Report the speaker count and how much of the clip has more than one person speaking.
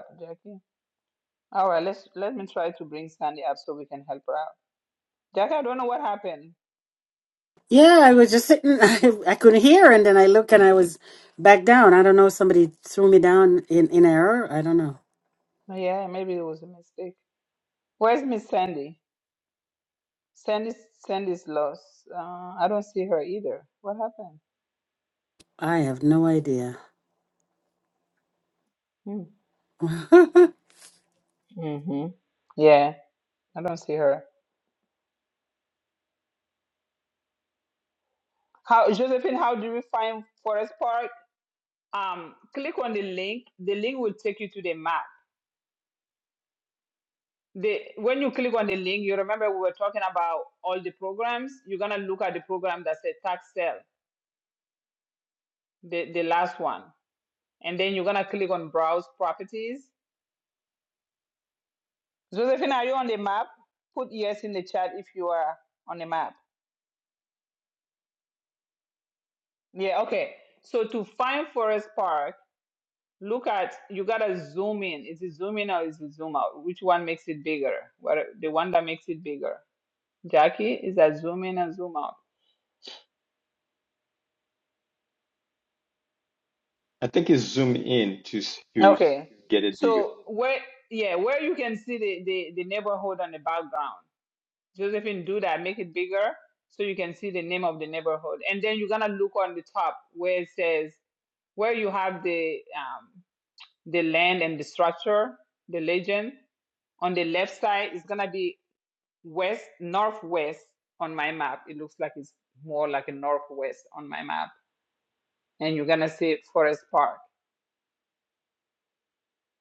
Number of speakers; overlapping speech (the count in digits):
3, under 1%